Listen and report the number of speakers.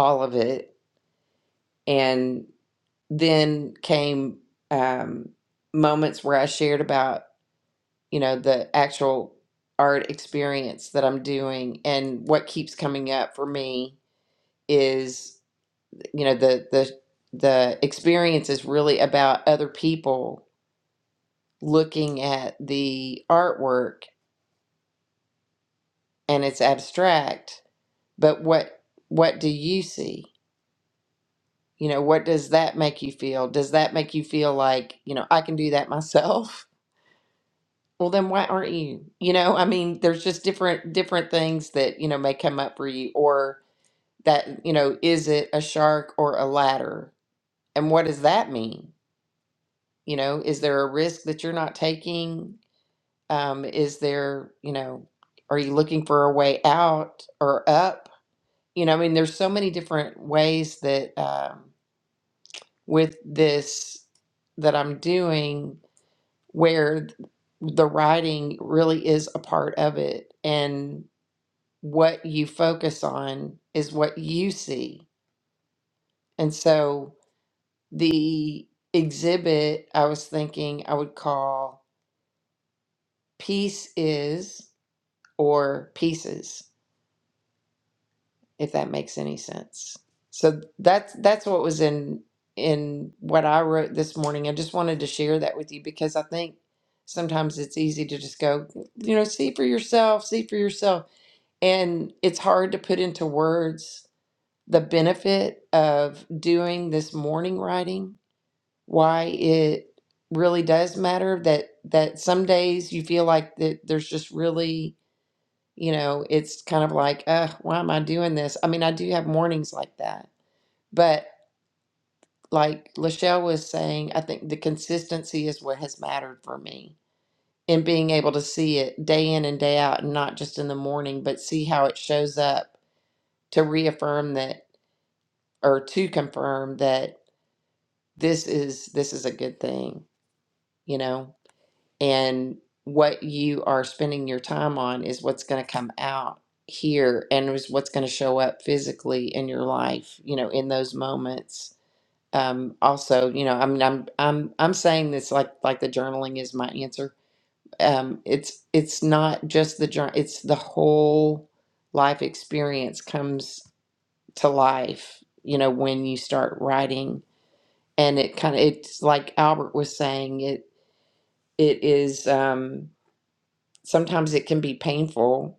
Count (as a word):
one